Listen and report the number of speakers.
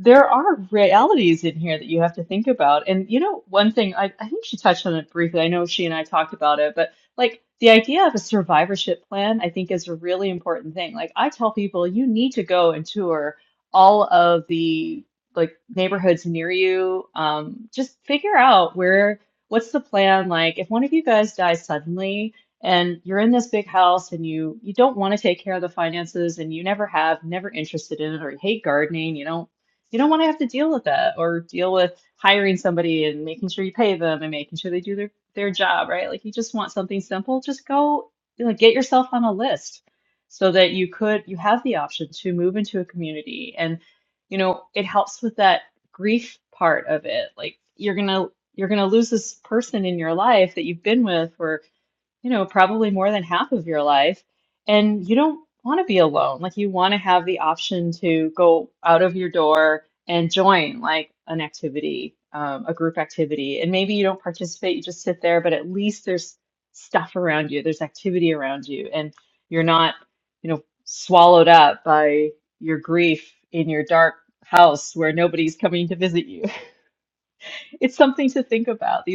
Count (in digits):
1